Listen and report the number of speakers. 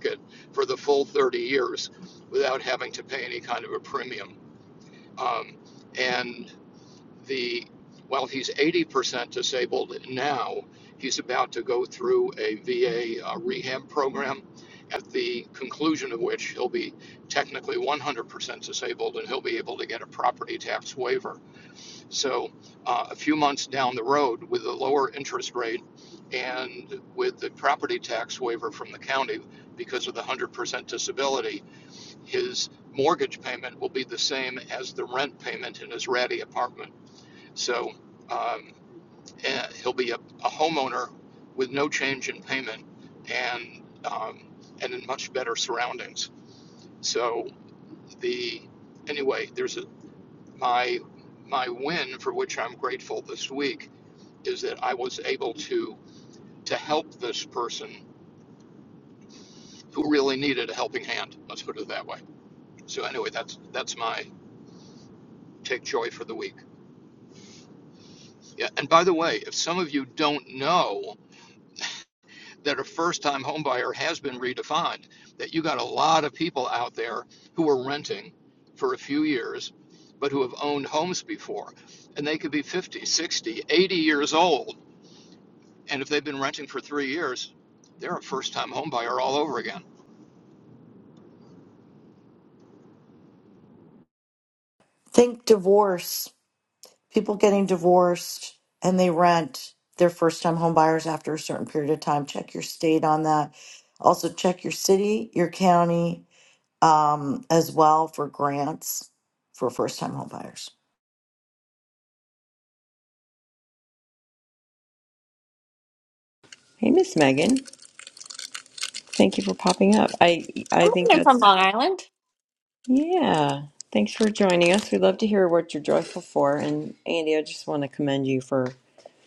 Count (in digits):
4